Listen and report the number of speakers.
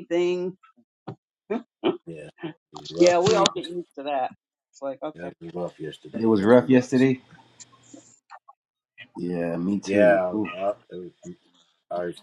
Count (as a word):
three